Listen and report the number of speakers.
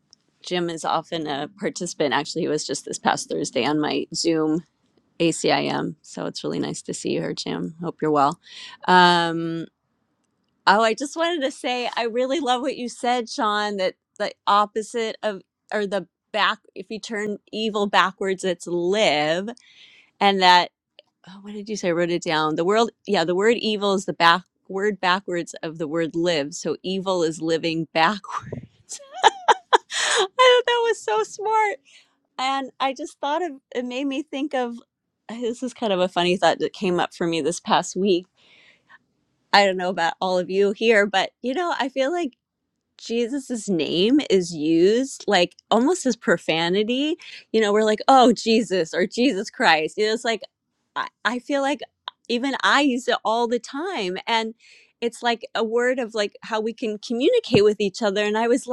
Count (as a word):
one